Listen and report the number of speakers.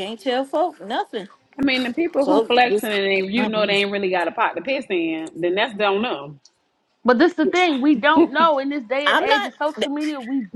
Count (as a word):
three